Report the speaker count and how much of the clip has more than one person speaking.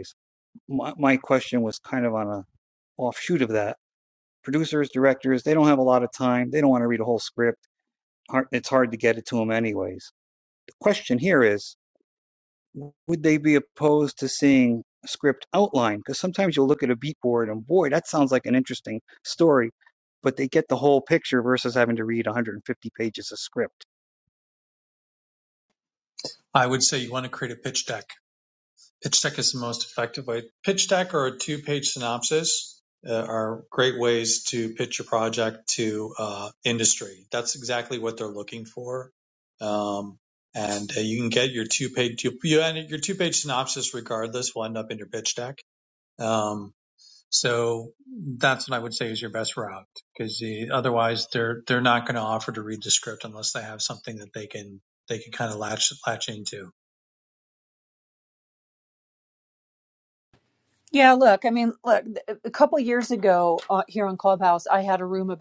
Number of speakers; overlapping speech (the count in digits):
3, no overlap